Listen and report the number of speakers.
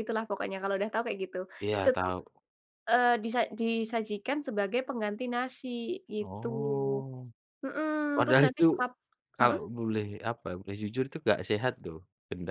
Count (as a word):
two